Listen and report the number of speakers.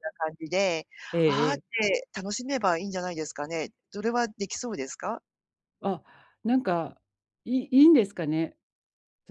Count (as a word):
two